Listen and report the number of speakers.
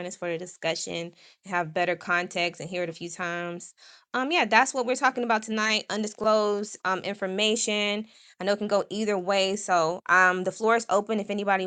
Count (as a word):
one